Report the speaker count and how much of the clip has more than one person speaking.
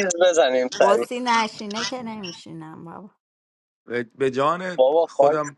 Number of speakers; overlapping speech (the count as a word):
three, about 13%